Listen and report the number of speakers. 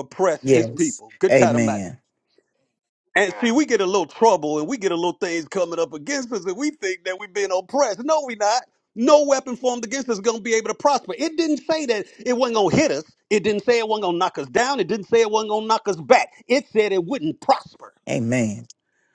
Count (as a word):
two